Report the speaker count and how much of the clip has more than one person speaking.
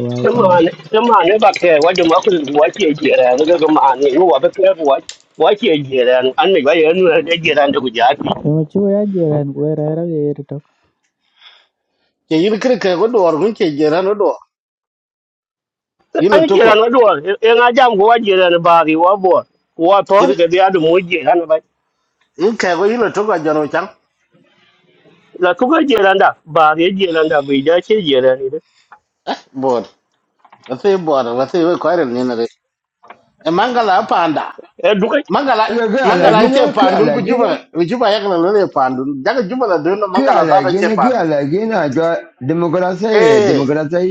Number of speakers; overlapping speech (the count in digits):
4, about 10%